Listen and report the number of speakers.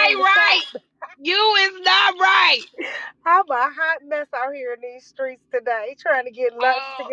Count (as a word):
two